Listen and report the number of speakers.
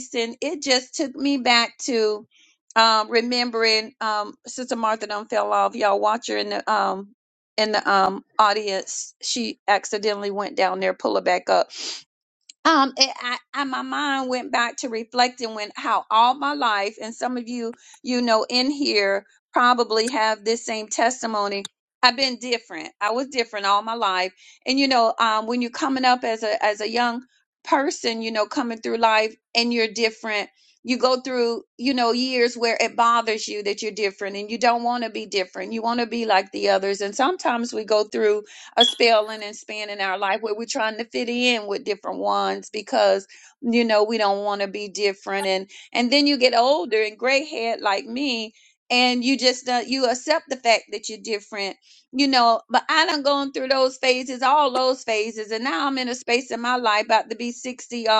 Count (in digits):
1